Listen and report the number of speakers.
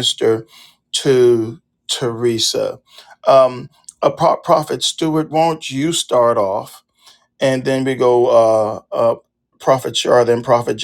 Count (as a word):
one